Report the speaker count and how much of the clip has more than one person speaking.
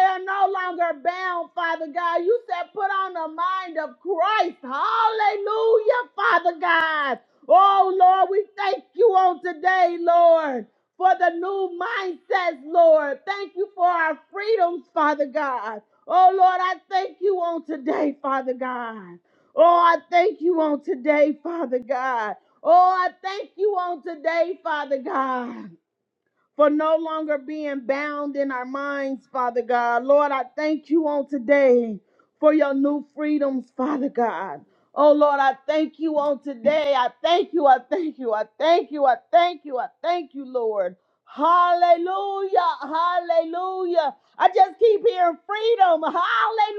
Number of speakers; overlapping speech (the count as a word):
one, no overlap